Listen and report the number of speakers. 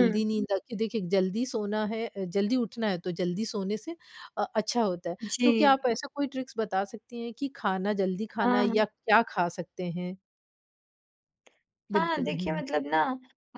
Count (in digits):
2